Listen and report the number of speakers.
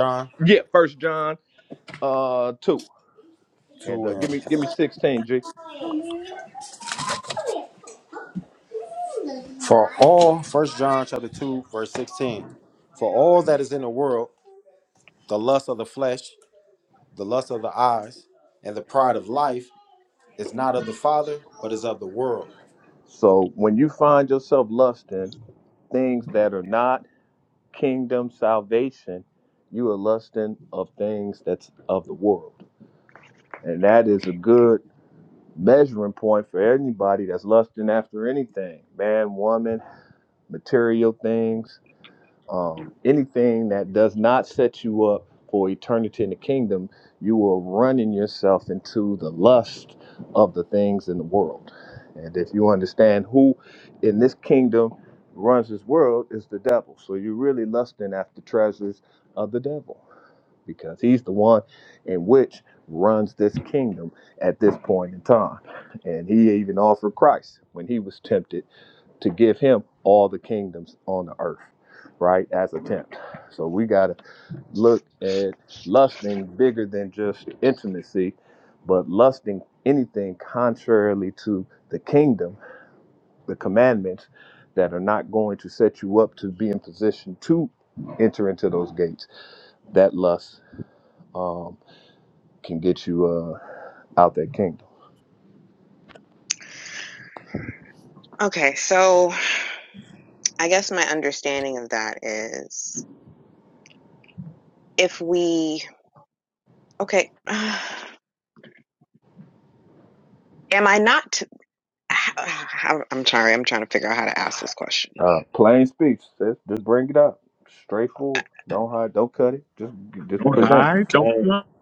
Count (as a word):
four